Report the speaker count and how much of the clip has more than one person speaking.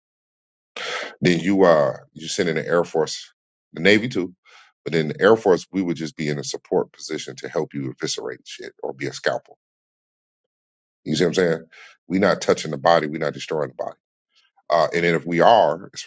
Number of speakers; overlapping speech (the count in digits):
1, no overlap